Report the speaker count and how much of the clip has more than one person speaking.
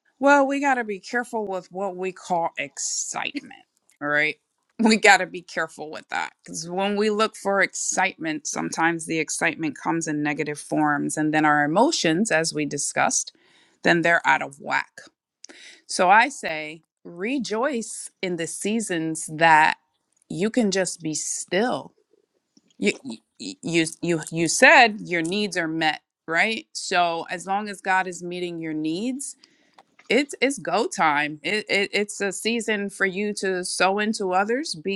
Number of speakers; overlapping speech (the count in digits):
1, no overlap